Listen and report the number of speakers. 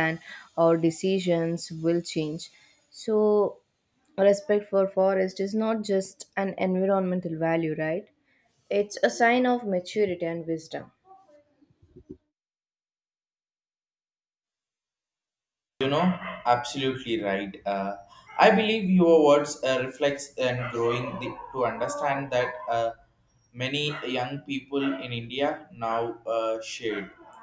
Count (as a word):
two